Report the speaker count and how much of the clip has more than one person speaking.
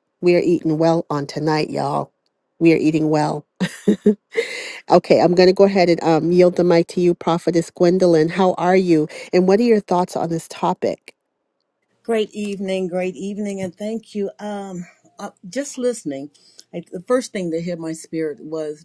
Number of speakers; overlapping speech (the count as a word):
two, no overlap